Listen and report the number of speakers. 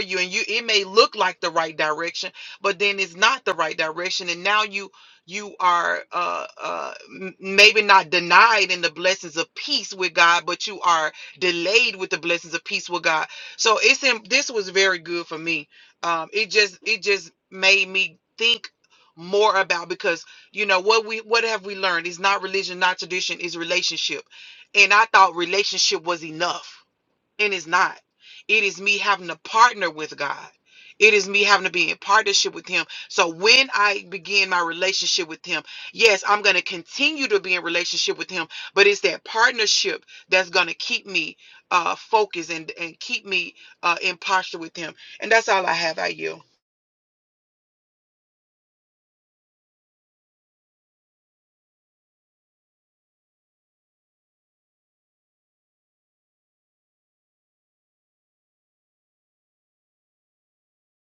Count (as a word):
one